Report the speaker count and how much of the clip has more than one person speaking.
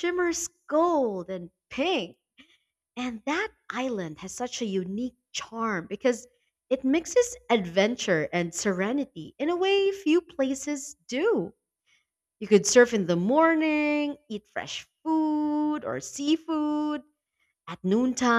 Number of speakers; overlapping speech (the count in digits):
1, no overlap